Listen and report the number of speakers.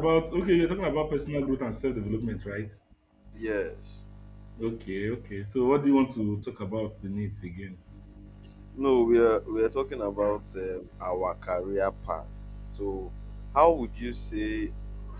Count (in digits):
2